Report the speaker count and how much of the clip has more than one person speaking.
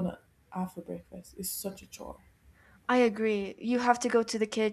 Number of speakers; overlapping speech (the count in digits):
2, no overlap